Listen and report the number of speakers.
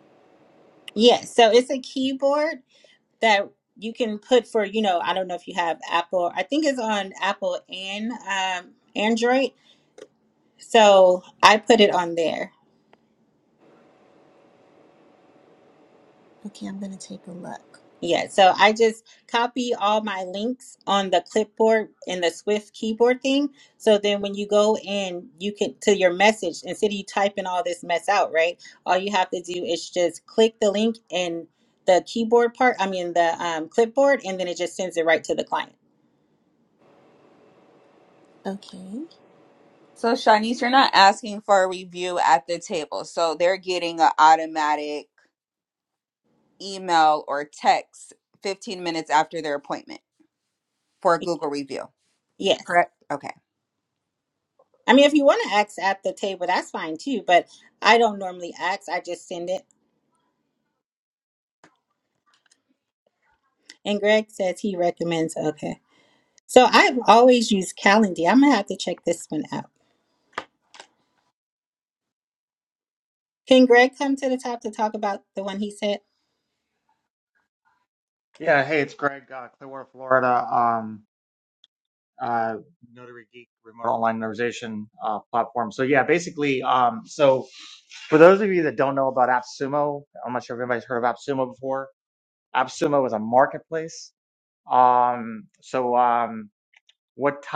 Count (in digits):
4